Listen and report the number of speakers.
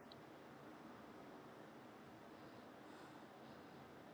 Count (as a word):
zero